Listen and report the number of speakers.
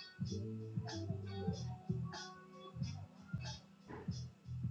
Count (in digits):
0